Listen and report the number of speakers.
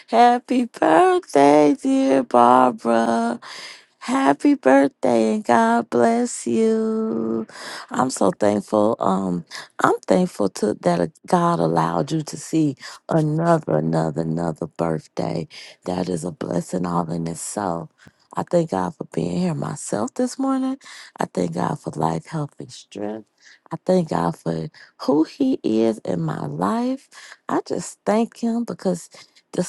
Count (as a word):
one